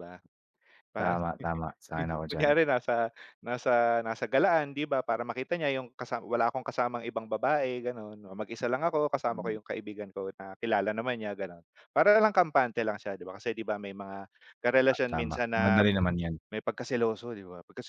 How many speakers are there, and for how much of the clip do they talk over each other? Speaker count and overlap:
2, about 7%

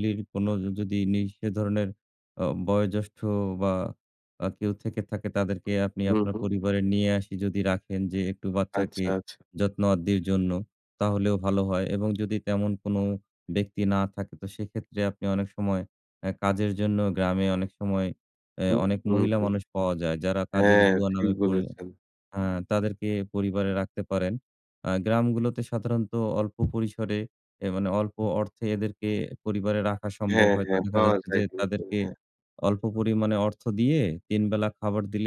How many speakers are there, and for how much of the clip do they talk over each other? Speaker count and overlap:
2, about 13%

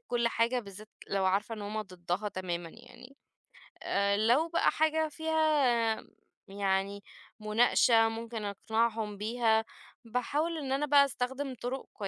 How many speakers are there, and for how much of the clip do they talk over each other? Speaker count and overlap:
1, no overlap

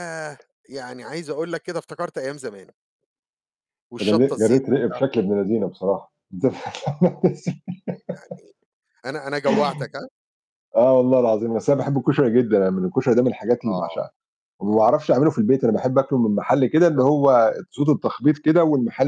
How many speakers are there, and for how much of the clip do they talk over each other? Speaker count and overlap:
2, about 10%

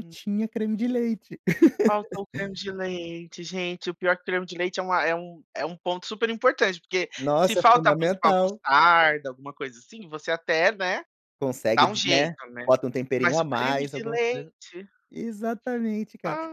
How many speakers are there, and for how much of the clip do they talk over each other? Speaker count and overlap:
2, about 19%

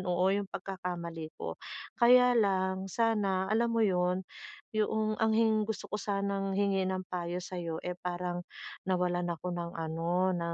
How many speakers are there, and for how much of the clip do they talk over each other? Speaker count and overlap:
1, no overlap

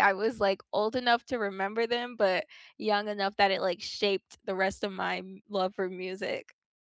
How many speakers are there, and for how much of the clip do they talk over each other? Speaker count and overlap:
1, no overlap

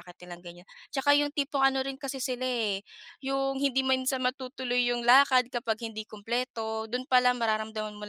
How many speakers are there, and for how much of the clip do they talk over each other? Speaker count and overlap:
1, no overlap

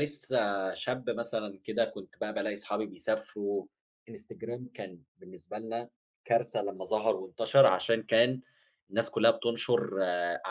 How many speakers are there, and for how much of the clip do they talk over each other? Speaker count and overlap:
1, no overlap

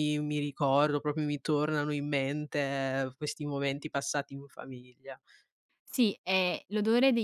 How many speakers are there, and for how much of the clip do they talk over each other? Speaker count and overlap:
2, no overlap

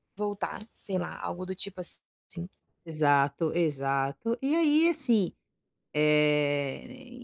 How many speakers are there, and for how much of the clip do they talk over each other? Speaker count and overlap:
2, no overlap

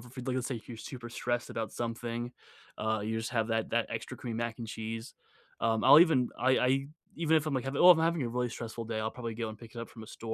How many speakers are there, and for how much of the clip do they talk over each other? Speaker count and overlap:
1, no overlap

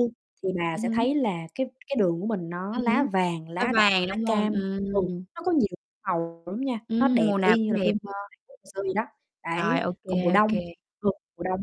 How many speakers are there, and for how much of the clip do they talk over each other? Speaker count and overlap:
2, about 36%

